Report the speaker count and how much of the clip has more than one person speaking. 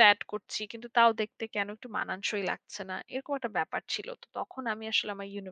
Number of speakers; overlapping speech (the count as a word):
one, no overlap